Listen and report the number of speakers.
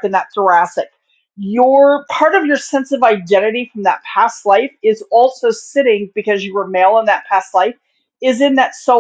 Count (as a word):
one